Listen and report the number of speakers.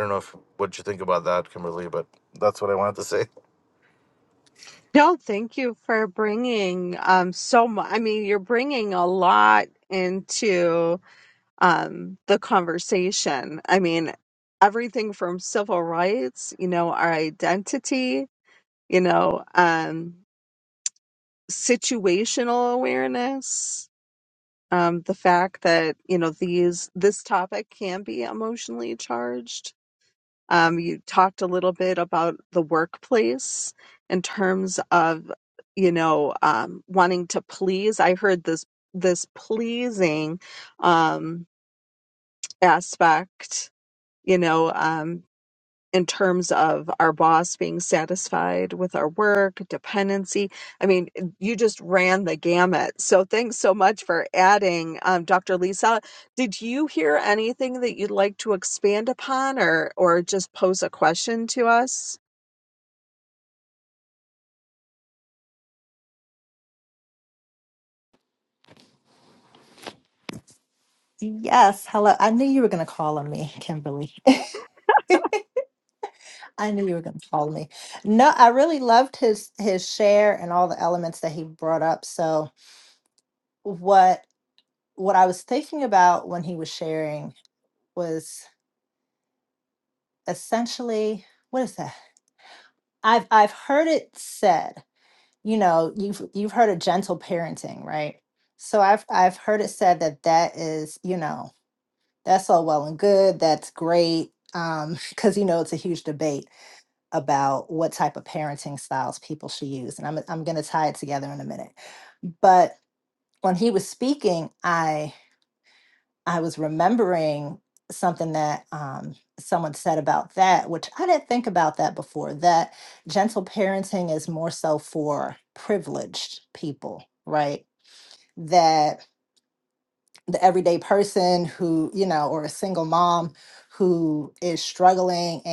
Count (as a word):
three